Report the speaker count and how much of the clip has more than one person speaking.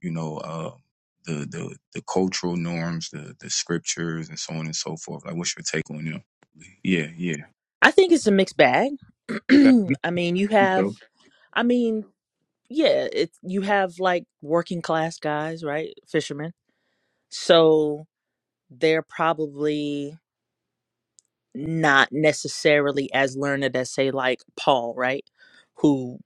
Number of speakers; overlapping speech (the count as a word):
two, about 1%